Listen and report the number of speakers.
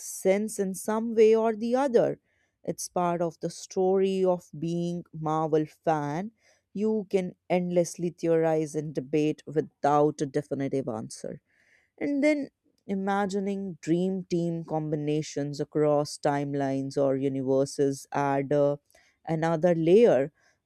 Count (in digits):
1